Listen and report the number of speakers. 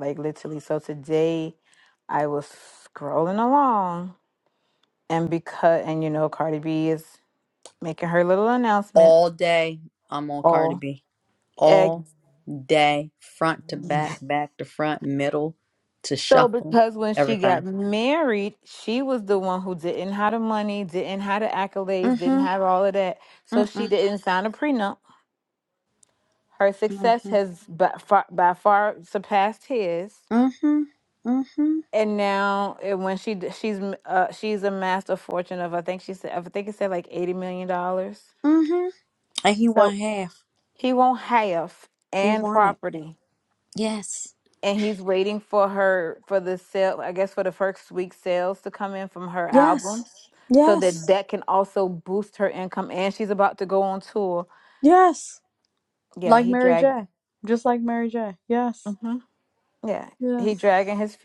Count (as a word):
two